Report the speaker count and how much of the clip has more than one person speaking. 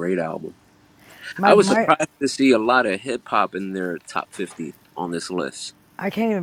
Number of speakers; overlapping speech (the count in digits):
2, about 9%